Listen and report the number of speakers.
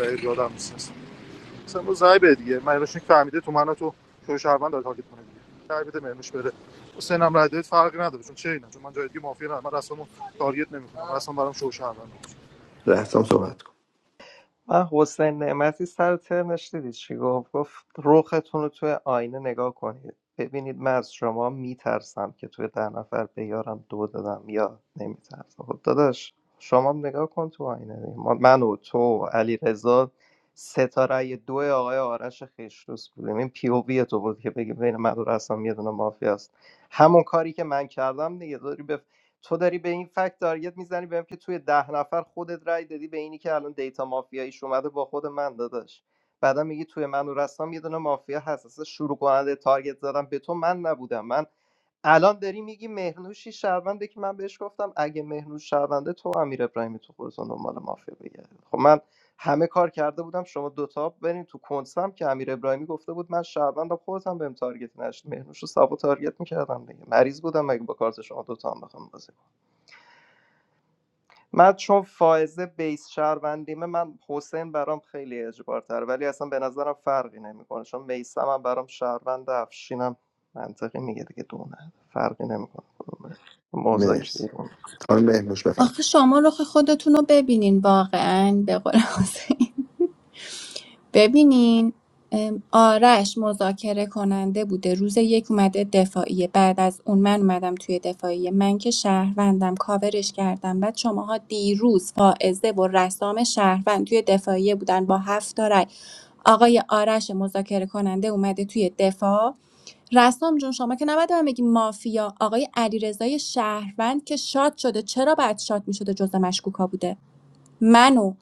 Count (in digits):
4